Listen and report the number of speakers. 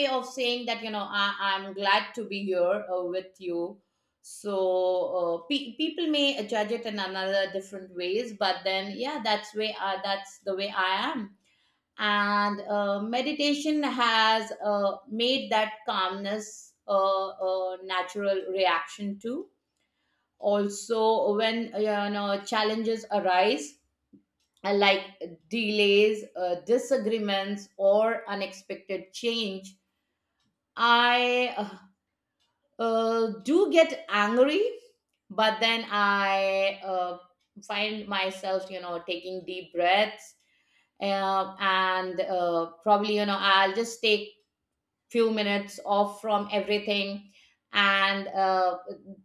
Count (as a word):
one